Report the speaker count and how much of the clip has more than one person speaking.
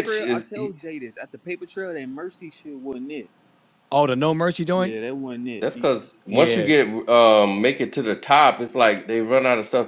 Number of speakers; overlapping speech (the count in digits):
3, about 11%